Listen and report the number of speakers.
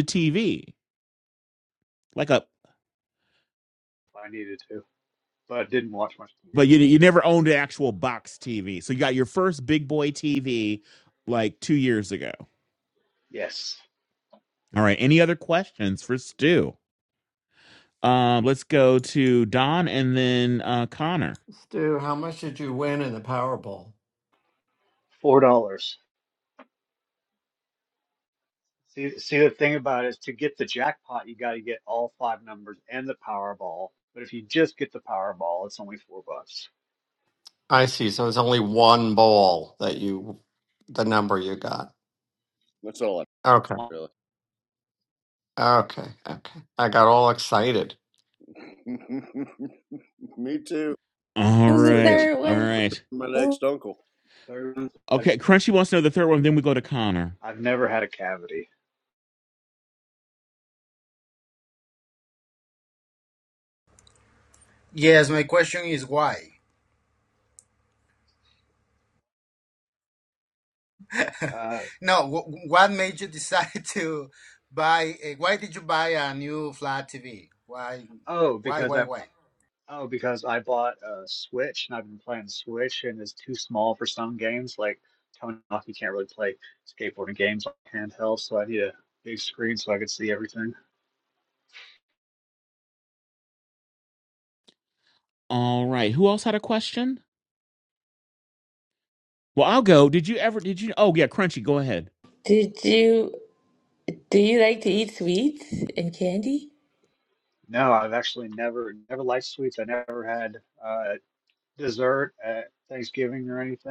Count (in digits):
6